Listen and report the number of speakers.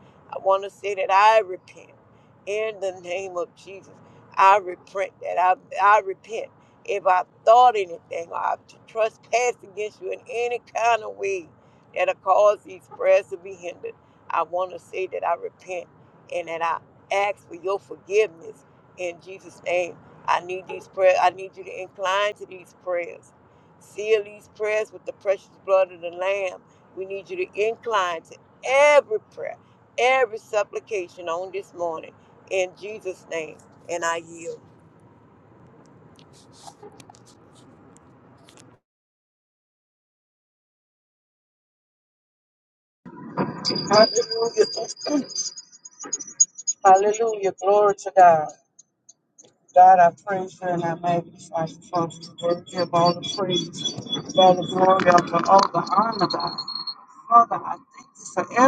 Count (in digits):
2